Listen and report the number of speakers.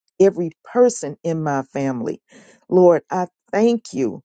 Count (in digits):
1